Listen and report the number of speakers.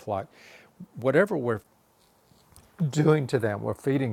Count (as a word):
one